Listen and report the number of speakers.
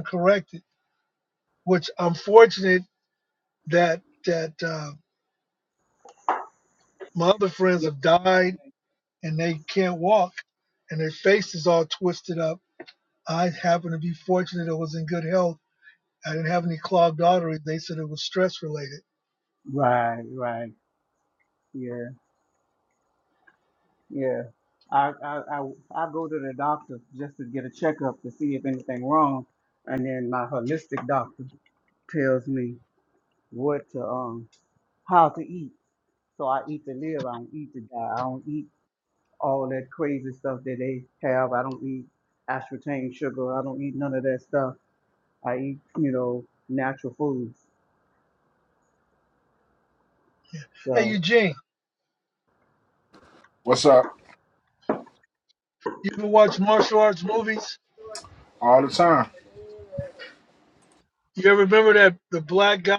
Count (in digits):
3